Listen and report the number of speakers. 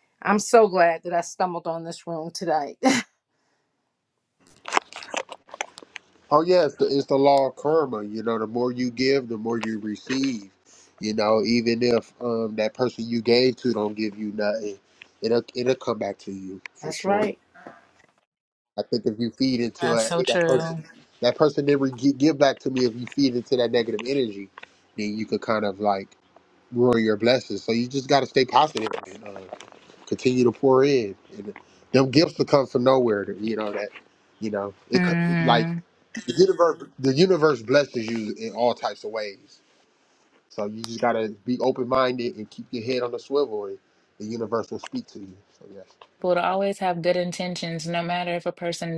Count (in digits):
3